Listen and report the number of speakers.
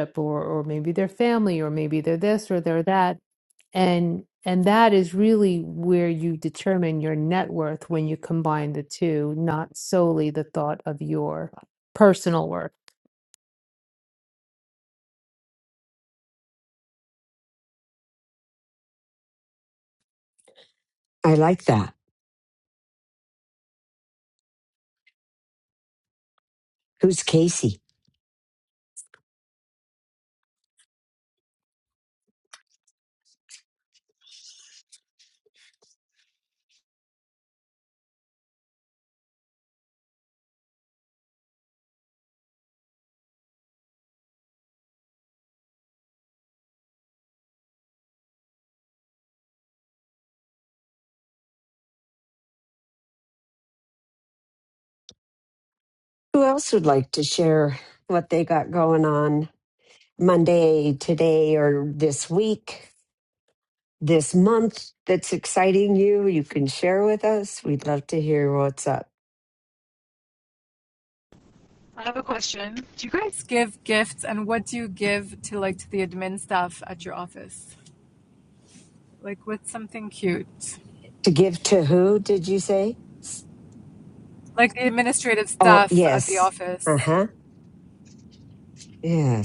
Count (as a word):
three